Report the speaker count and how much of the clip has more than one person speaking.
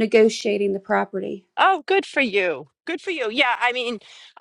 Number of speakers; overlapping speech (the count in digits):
2, no overlap